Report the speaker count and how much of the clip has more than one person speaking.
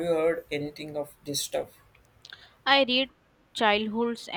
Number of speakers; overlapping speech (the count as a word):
two, no overlap